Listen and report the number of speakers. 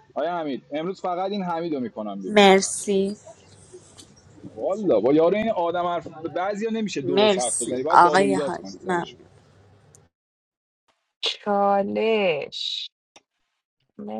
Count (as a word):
three